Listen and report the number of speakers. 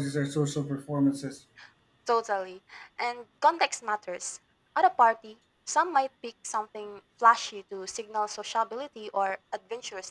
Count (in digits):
2